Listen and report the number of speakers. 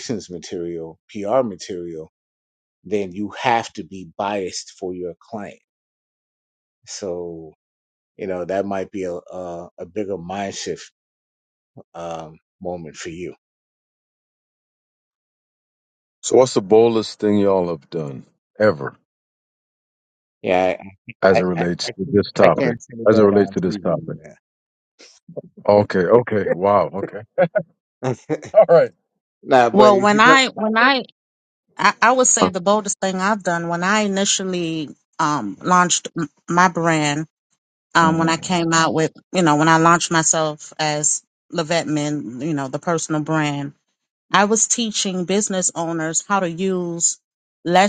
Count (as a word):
three